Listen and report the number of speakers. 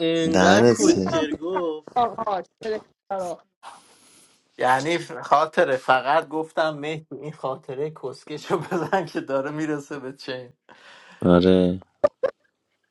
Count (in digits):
4